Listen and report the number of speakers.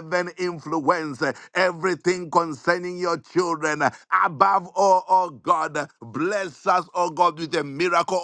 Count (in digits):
1